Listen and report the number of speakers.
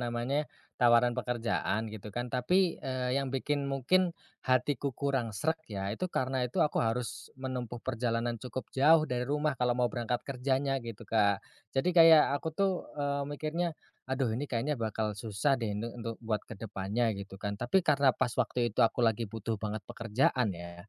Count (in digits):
1